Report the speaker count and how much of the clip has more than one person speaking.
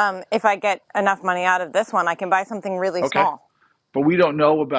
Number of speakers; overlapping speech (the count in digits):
2, about 6%